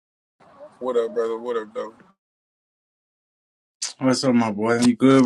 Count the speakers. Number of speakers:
2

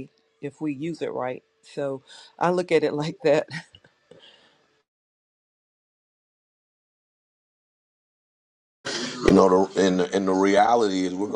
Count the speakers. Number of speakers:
2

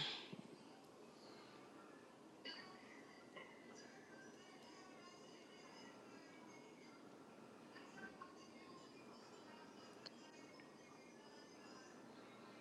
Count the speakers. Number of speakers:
0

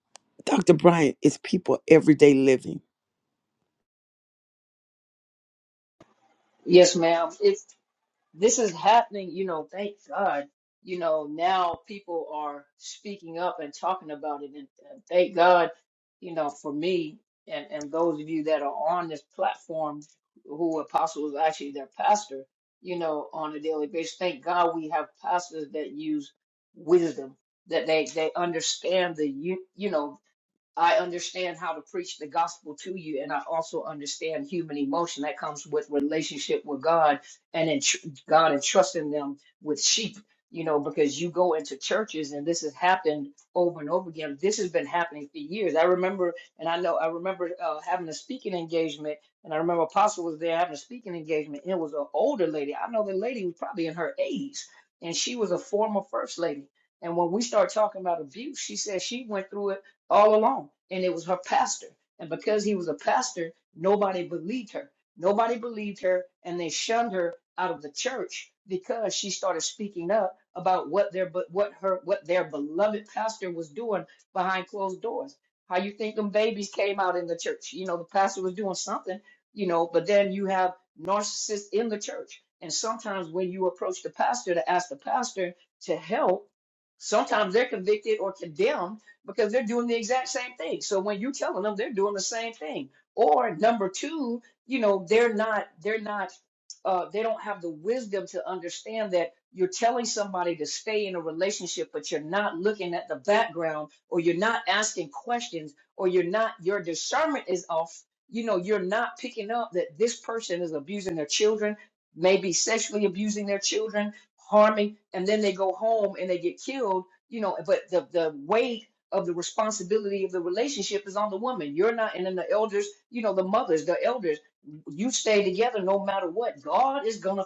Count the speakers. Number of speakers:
2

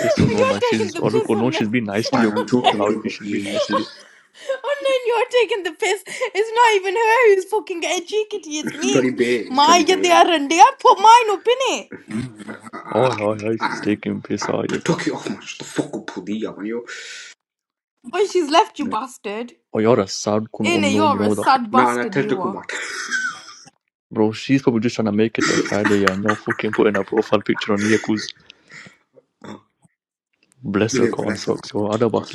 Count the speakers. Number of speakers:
3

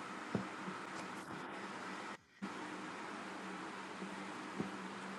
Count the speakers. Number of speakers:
0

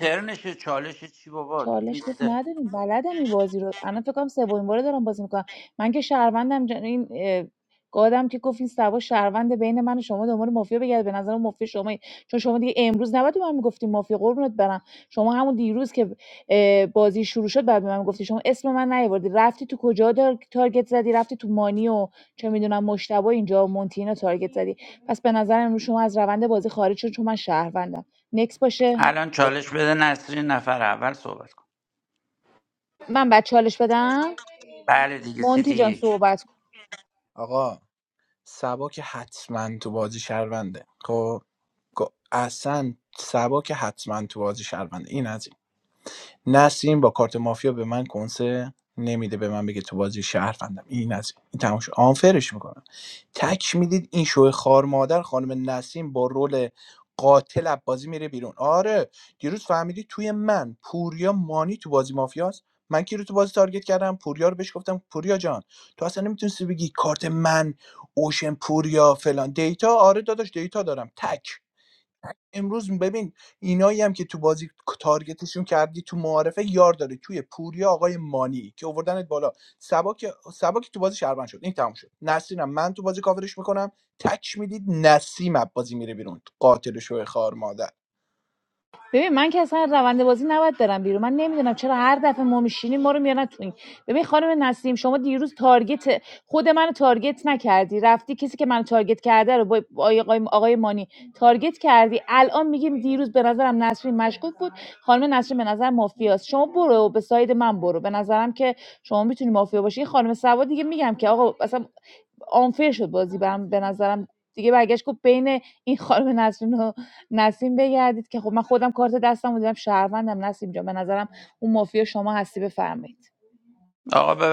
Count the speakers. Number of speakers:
3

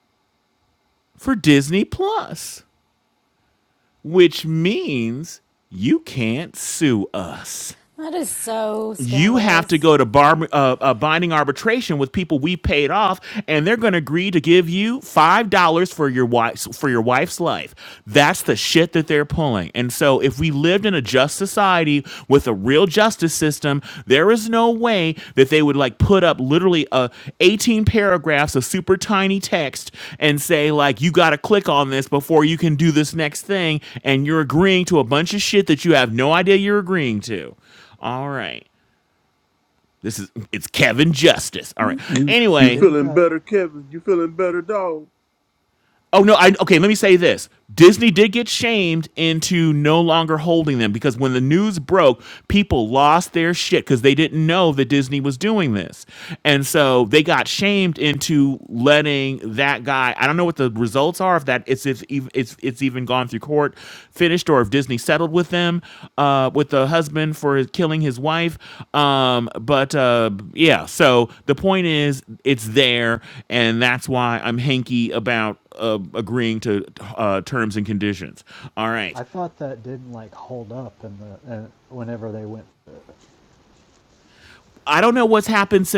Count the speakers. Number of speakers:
4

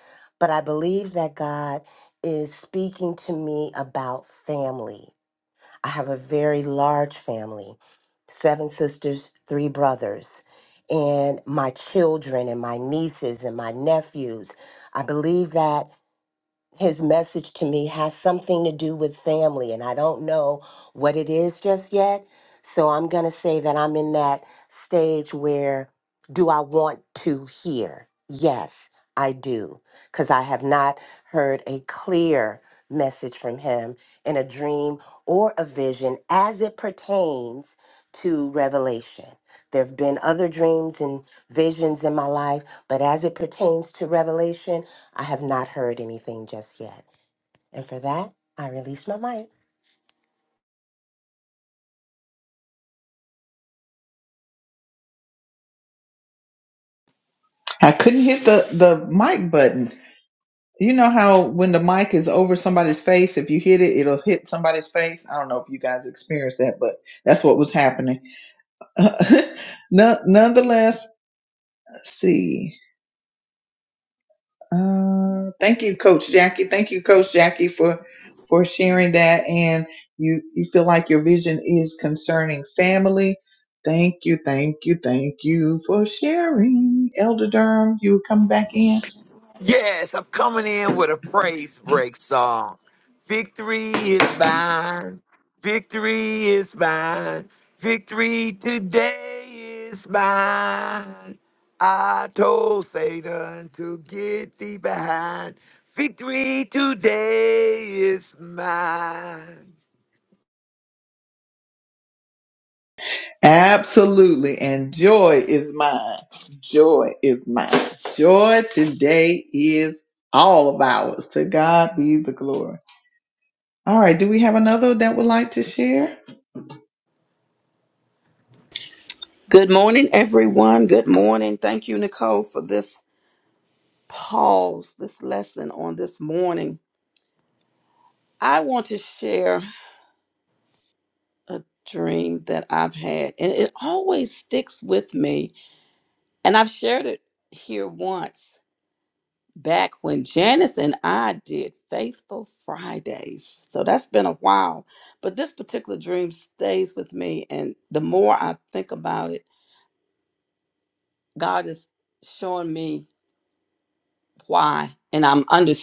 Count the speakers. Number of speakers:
4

